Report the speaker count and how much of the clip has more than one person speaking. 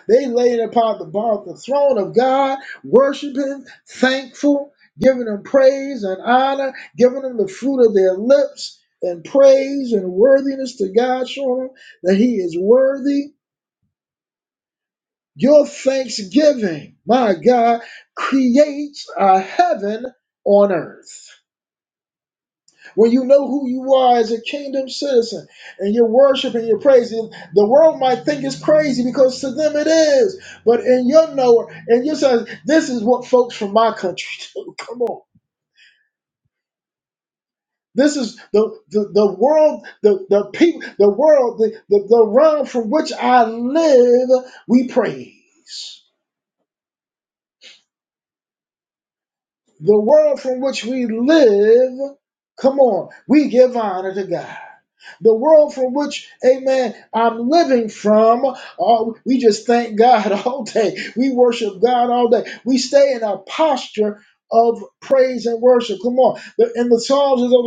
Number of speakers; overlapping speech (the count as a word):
one, no overlap